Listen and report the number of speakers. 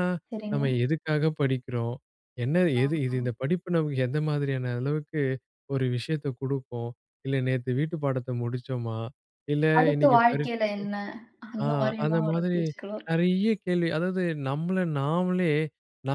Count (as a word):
two